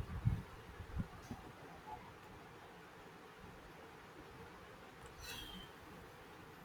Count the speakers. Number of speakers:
zero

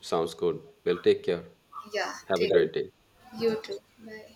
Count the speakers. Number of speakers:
two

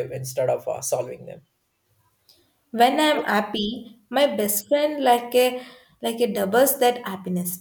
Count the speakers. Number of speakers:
two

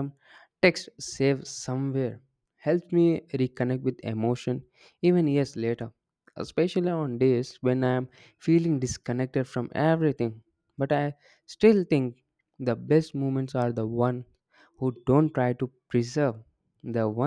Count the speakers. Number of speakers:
one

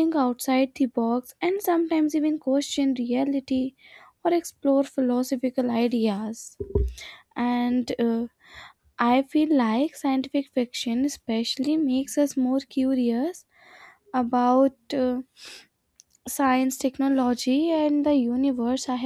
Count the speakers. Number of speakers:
one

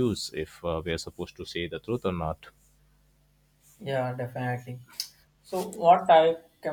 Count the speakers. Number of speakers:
two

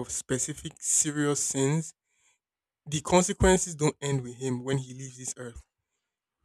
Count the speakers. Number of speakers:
one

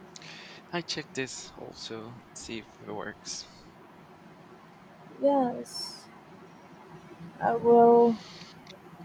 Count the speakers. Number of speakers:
two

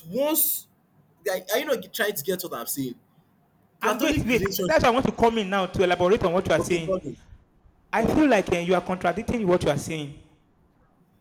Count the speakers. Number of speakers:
two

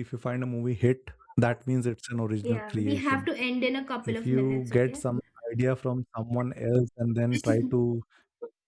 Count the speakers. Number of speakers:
two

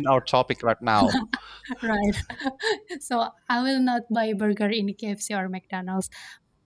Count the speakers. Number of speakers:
two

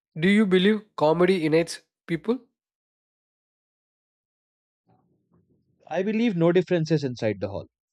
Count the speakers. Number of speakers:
two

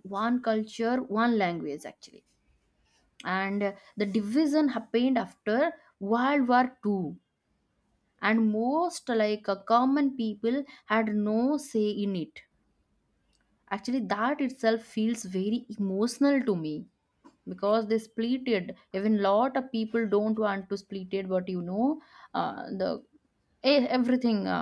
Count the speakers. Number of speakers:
one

